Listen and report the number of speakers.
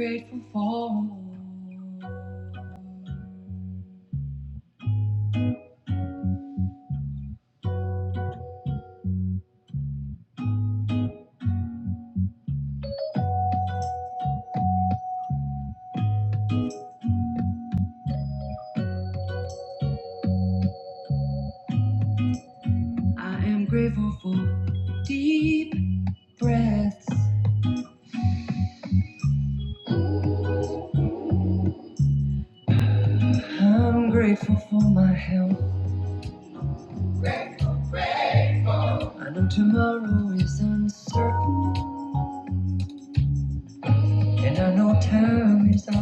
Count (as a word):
one